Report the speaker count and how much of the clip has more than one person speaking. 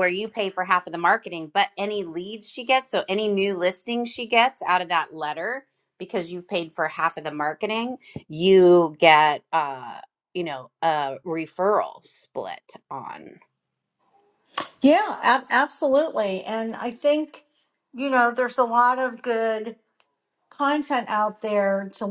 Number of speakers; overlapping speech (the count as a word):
two, no overlap